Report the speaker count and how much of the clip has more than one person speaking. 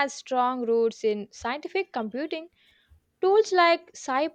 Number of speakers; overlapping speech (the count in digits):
1, no overlap